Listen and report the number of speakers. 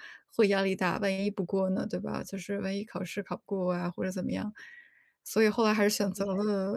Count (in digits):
1